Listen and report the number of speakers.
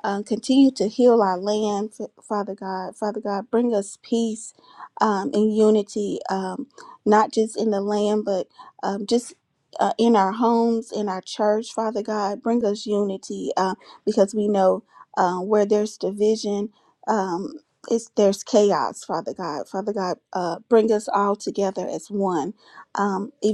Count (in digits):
1